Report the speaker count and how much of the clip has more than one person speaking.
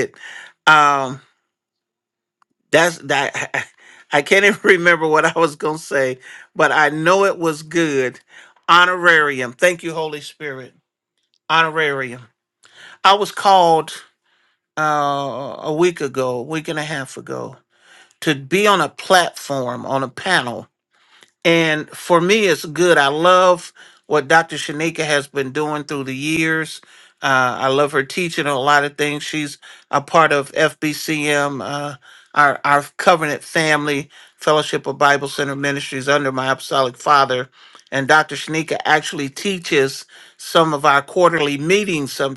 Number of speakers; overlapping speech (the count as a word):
one, no overlap